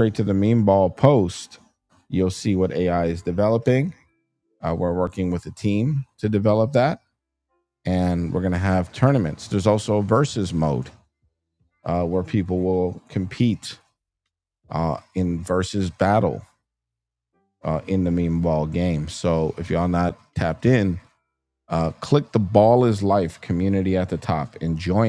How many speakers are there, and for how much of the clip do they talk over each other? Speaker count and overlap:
one, no overlap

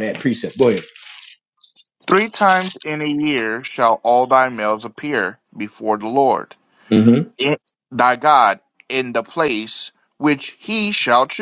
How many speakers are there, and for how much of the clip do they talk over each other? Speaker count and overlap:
two, no overlap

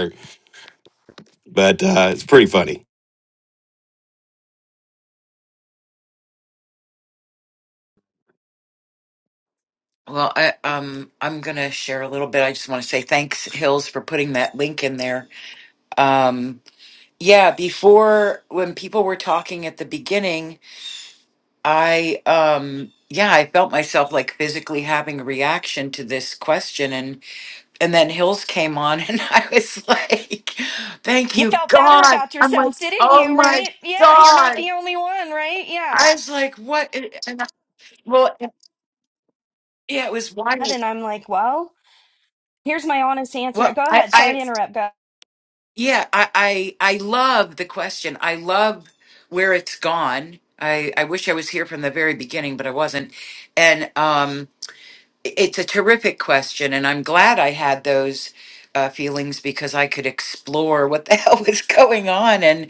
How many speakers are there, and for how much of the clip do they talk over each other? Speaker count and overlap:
three, about 7%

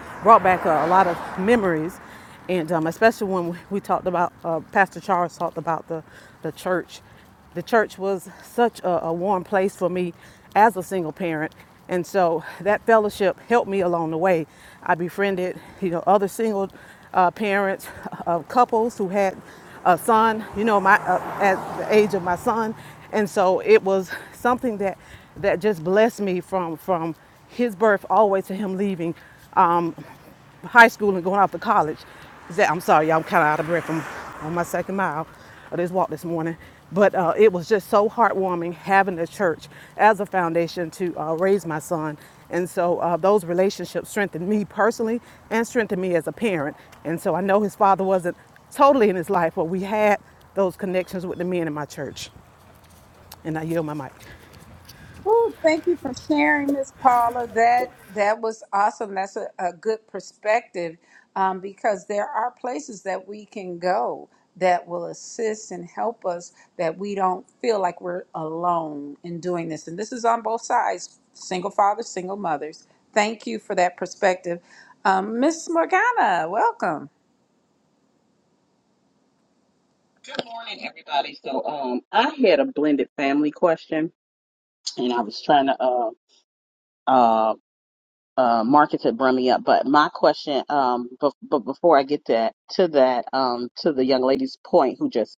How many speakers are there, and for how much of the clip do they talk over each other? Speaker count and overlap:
three, no overlap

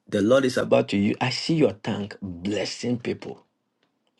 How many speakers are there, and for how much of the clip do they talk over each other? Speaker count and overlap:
one, no overlap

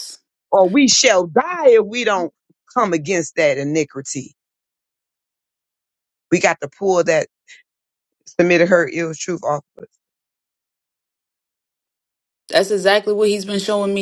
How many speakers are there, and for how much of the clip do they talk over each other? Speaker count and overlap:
two, no overlap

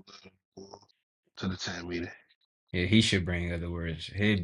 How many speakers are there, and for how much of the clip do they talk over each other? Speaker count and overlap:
two, no overlap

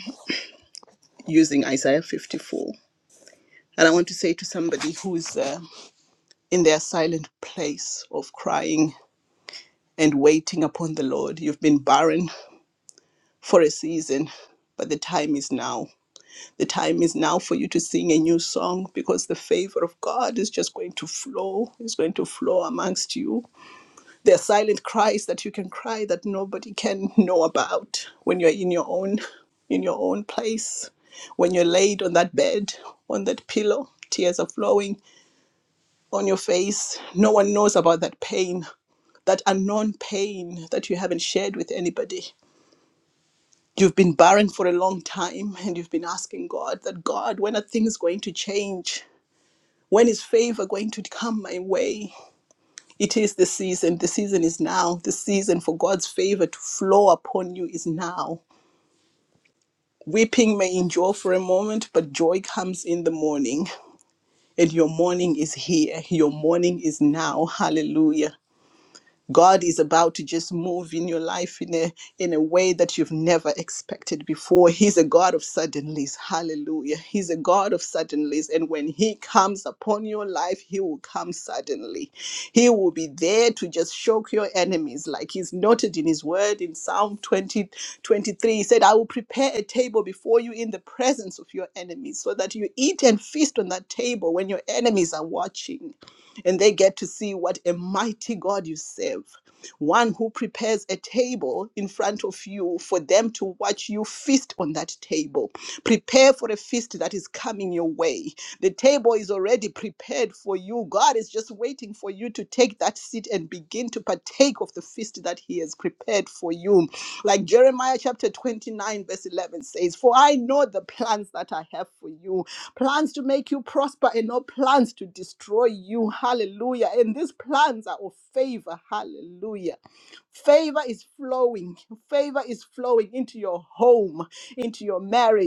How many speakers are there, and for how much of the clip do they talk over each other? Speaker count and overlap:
one, no overlap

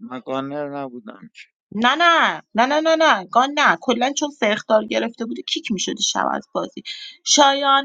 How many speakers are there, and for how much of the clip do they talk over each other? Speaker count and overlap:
two, no overlap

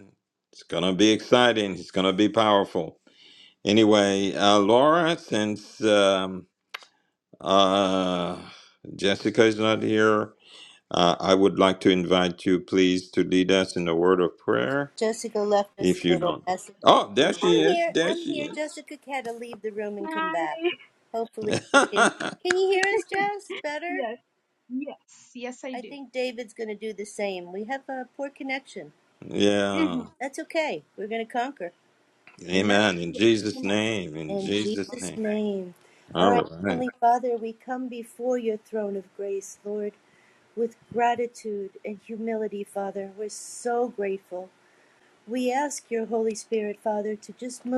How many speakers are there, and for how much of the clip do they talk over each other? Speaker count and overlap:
three, about 11%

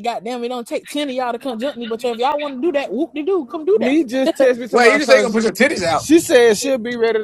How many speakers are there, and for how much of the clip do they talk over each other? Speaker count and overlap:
three, about 10%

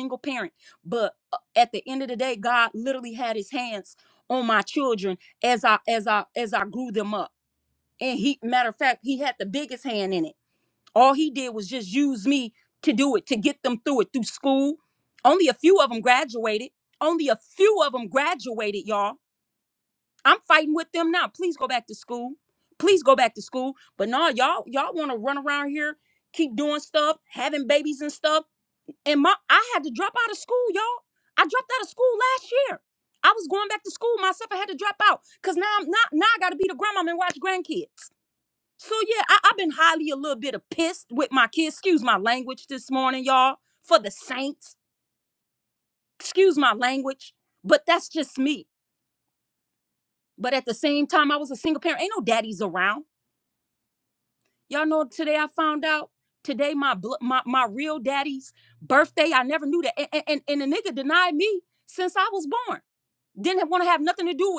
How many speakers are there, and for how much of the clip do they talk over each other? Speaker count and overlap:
one, no overlap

